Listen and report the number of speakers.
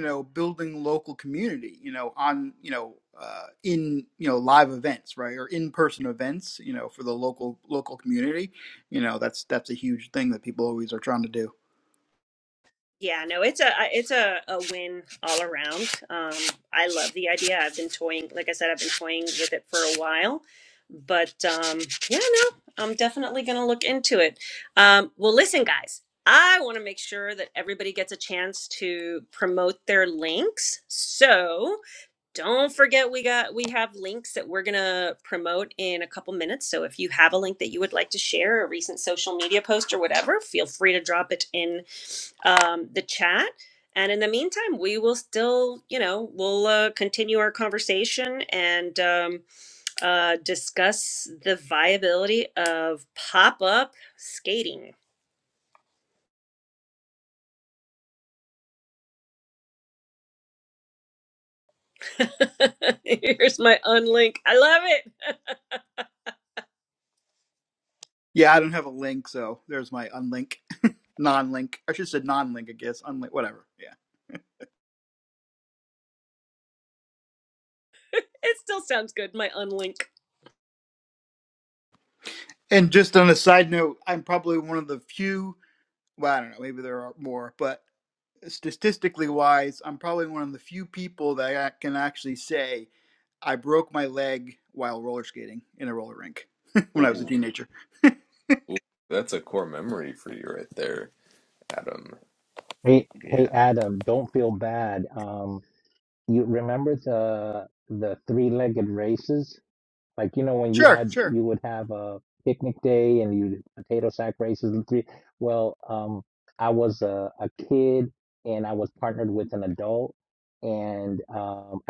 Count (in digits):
4